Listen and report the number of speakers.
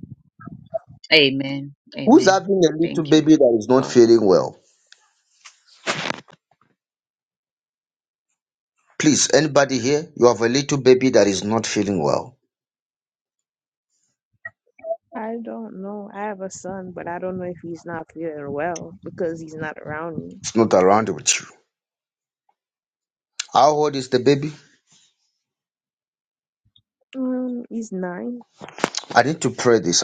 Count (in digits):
3